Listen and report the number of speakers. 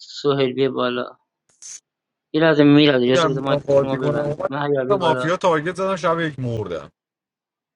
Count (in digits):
2